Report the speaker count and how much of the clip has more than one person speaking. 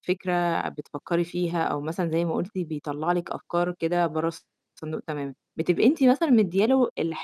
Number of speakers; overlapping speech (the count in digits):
1, no overlap